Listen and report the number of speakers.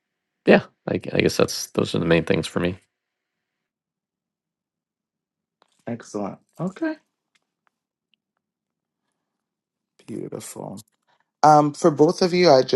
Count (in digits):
2